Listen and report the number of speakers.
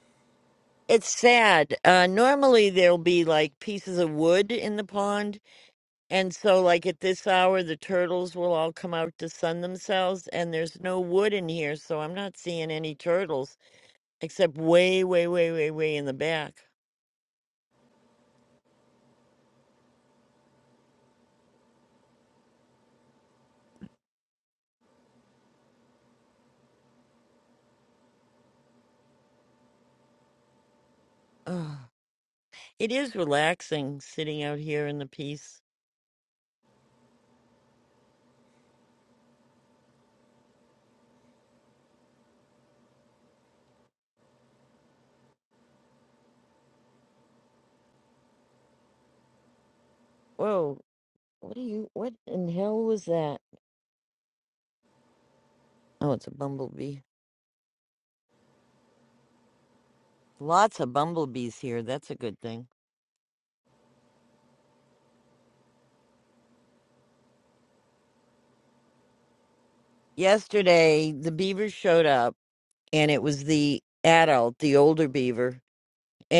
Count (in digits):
1